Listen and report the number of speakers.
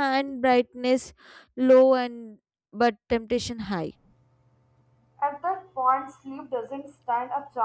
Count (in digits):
2